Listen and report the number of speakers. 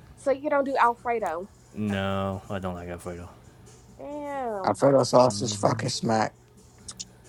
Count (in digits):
3